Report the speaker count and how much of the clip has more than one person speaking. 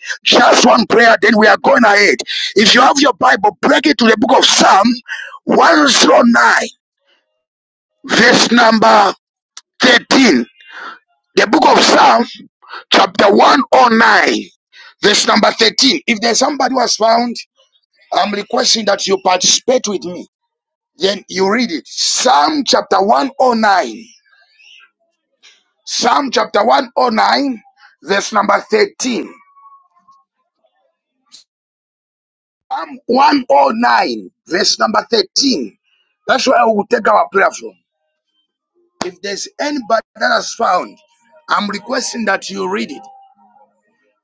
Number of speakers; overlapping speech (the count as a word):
one, no overlap